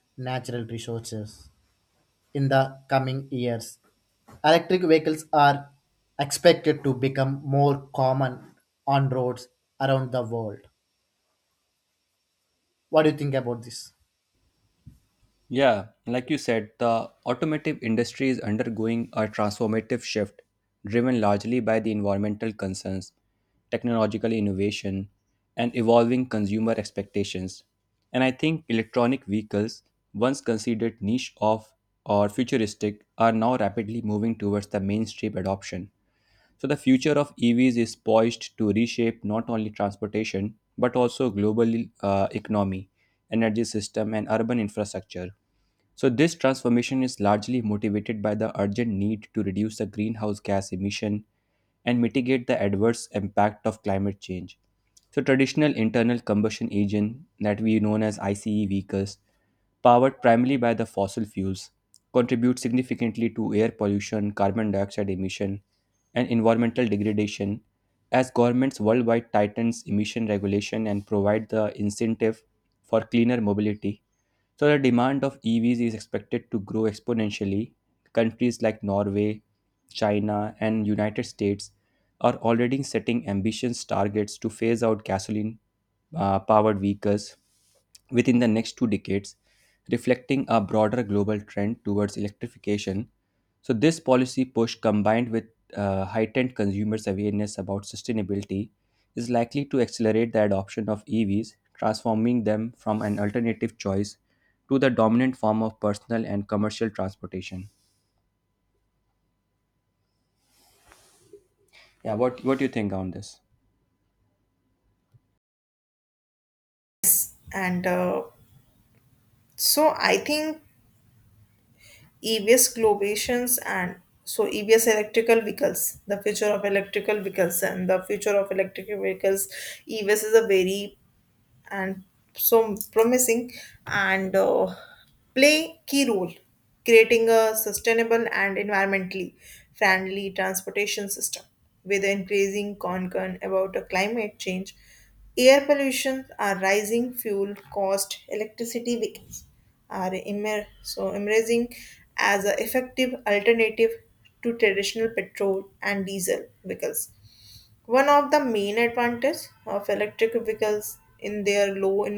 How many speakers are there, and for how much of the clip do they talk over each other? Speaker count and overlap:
three, no overlap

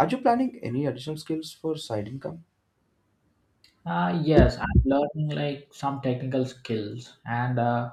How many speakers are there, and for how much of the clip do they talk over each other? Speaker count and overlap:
two, no overlap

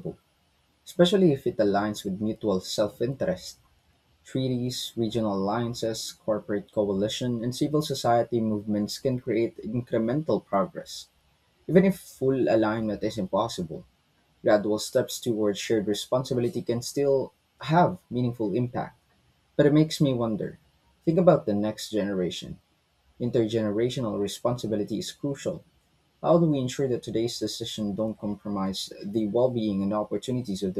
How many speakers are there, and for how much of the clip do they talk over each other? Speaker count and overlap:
one, no overlap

